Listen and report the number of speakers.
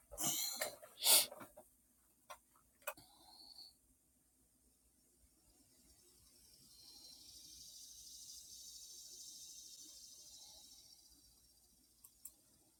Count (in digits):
0